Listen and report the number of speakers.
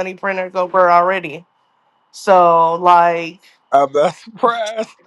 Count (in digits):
2